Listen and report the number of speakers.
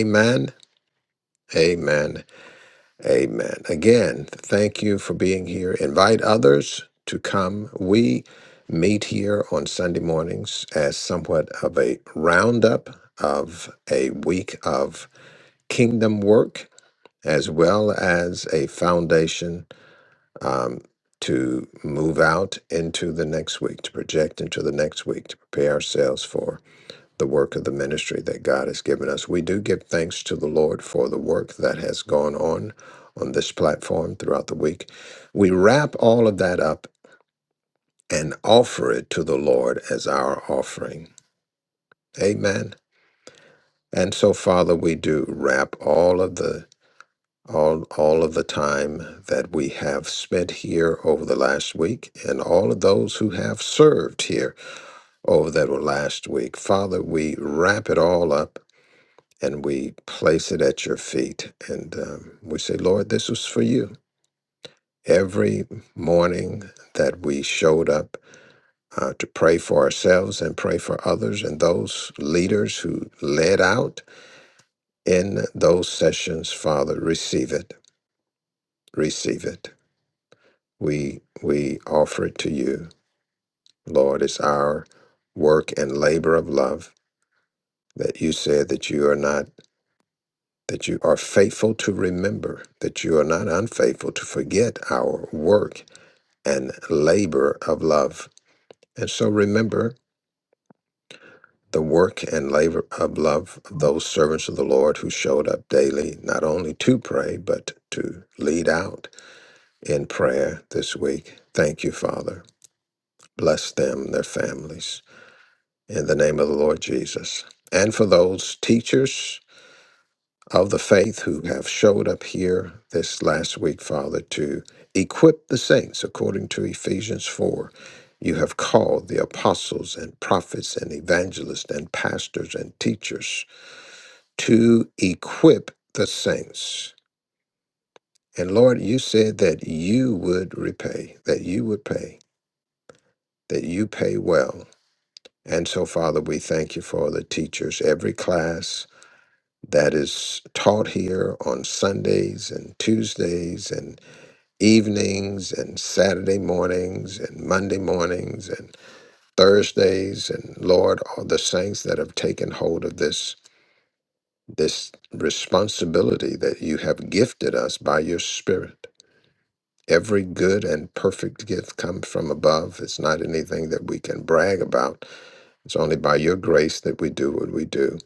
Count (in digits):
1